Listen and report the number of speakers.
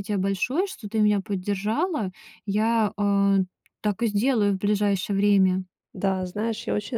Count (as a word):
two